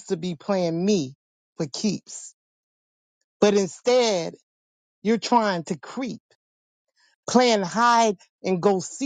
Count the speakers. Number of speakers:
one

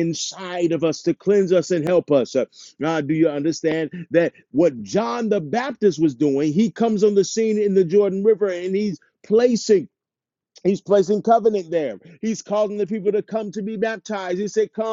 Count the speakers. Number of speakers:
one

